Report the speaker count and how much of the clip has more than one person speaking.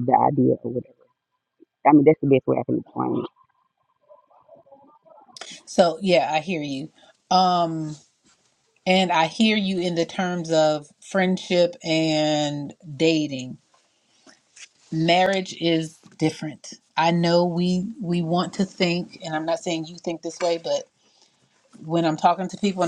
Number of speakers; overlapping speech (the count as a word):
two, no overlap